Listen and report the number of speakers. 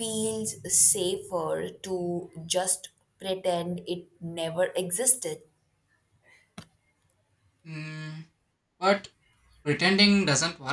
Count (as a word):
two